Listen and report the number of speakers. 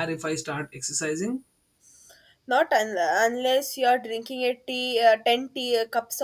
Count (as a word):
two